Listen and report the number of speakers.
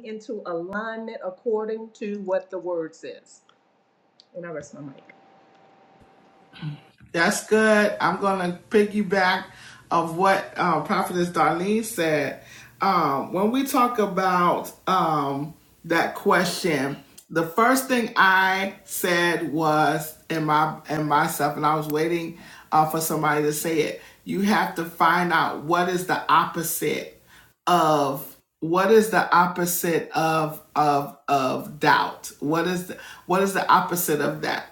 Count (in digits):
2